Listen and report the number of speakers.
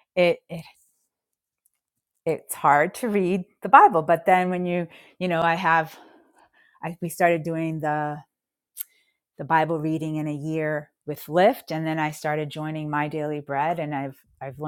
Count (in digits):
1